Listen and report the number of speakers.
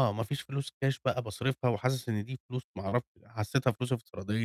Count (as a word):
one